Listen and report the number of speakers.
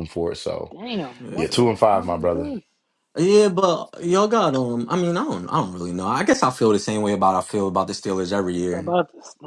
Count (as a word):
three